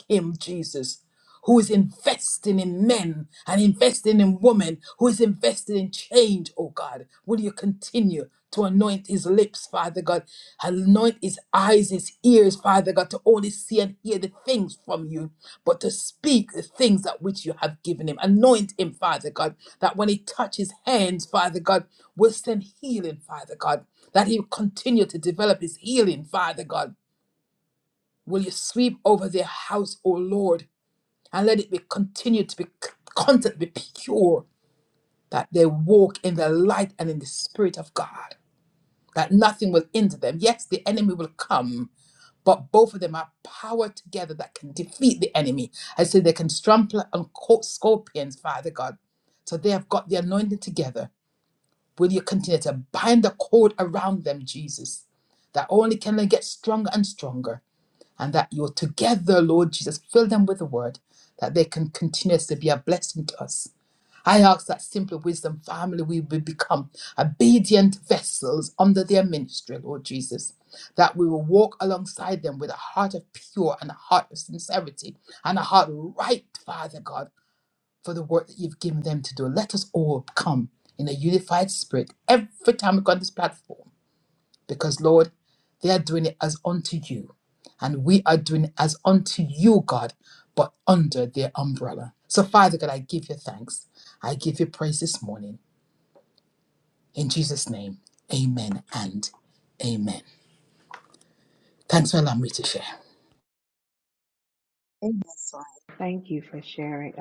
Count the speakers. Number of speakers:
two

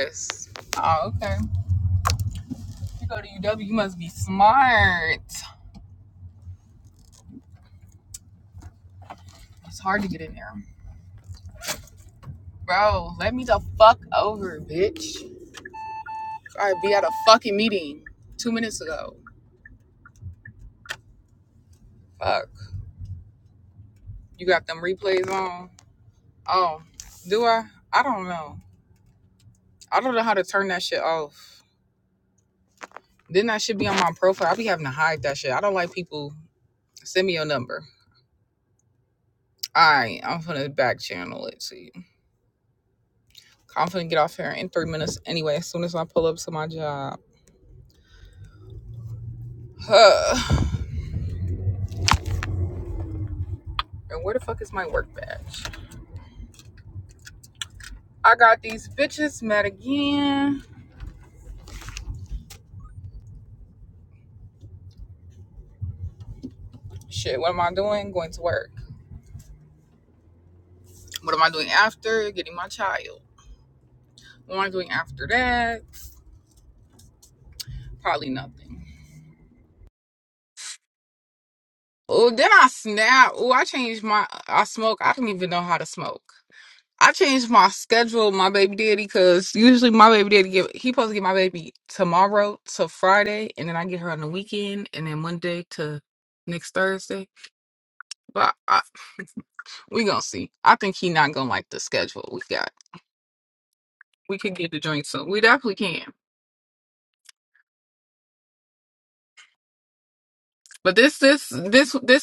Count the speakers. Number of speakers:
one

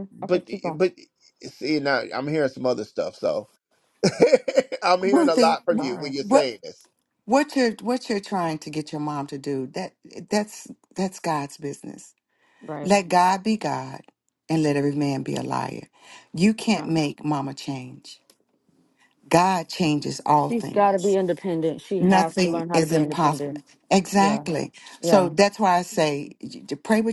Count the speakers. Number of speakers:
three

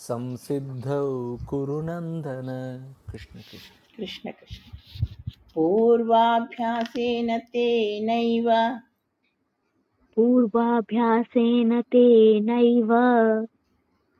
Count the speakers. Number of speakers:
three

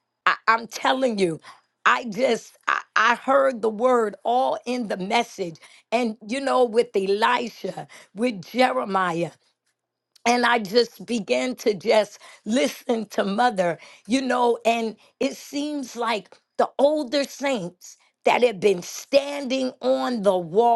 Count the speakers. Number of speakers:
one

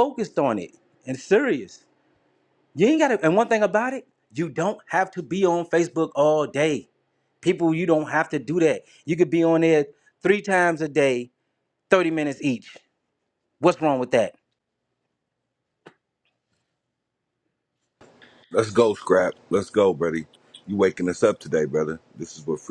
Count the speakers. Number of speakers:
two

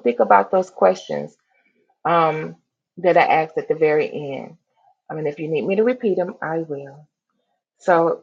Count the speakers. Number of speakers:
one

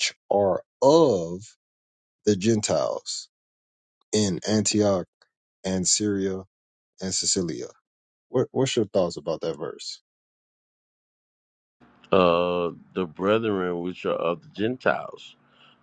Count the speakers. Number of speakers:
two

